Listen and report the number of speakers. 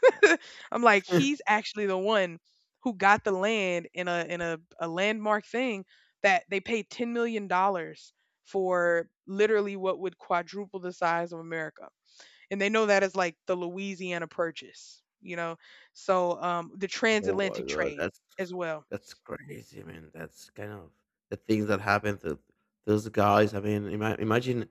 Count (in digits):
2